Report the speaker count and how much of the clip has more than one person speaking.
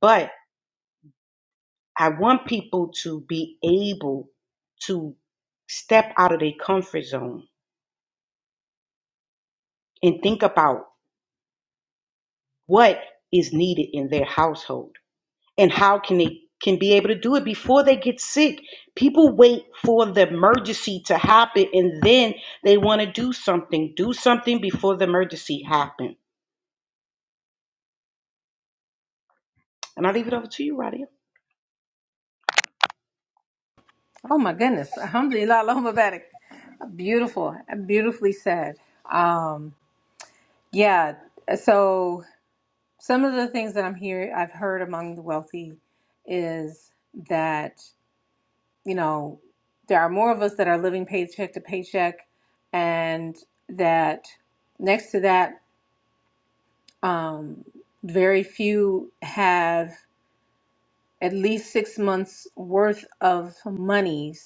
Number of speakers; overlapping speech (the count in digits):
2, no overlap